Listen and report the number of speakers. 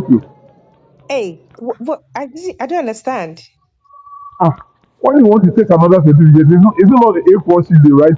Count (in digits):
2